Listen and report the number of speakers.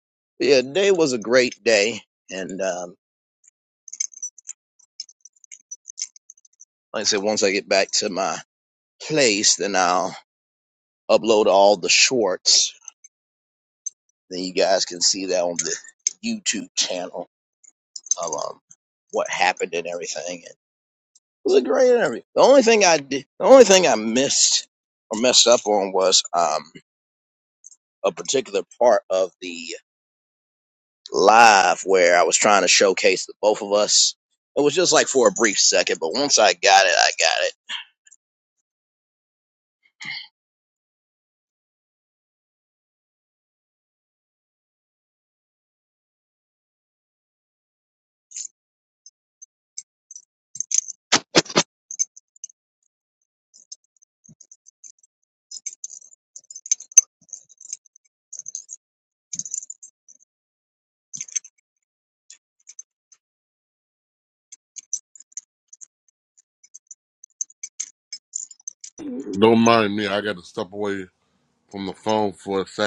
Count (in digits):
2